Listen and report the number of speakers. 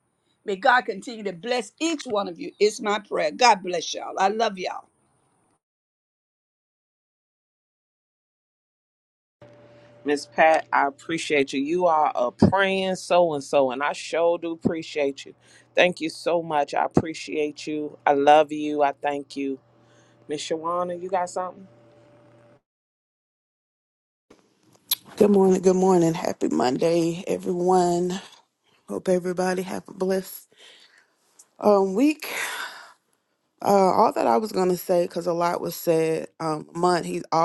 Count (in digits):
3